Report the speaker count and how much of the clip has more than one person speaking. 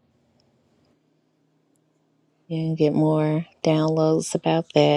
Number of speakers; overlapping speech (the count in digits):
1, no overlap